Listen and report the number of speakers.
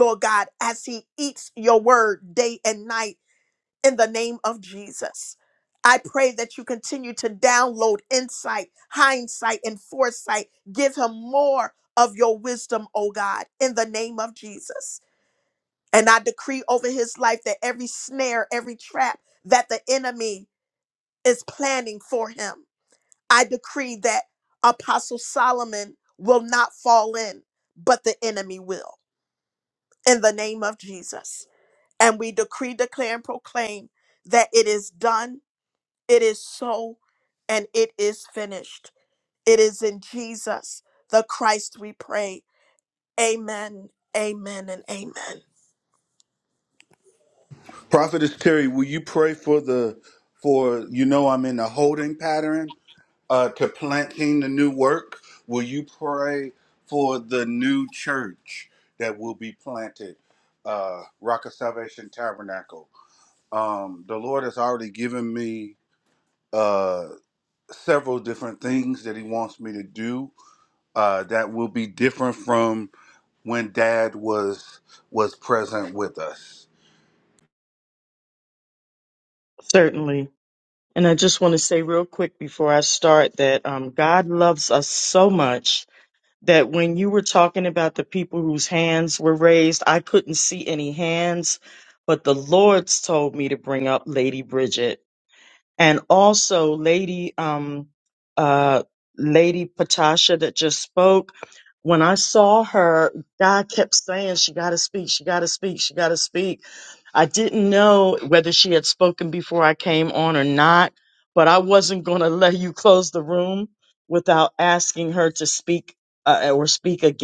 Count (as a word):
three